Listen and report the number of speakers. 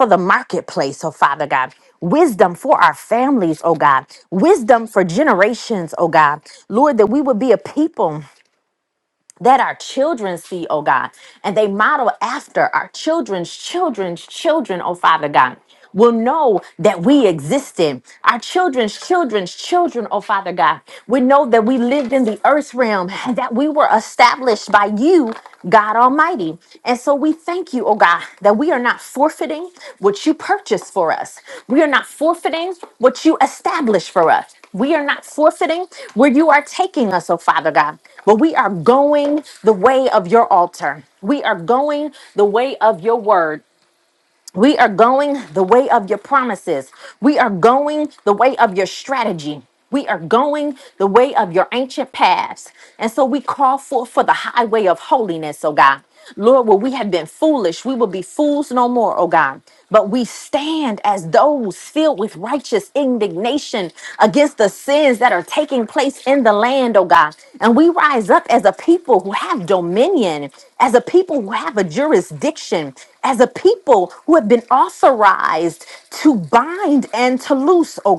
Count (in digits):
1